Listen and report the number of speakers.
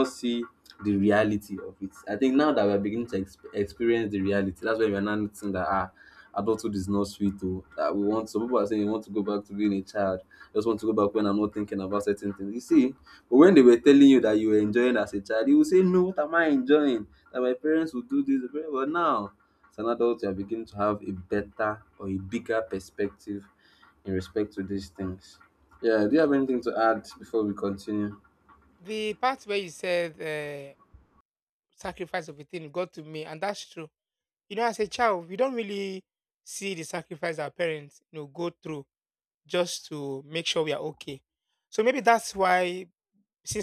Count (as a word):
two